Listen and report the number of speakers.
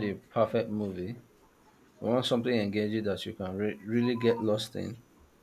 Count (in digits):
1